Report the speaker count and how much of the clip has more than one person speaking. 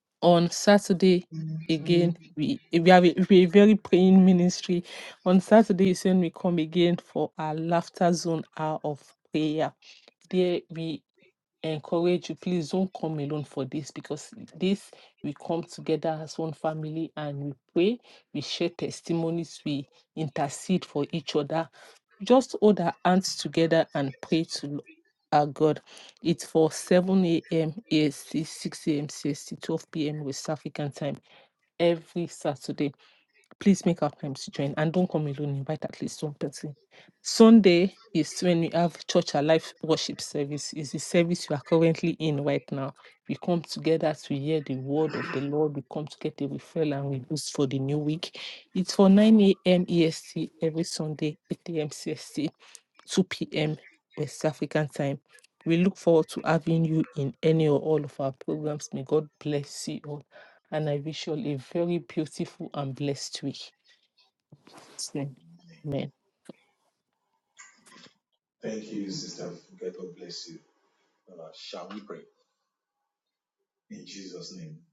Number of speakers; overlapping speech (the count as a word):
two, no overlap